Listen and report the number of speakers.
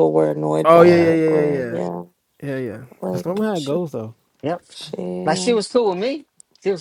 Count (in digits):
3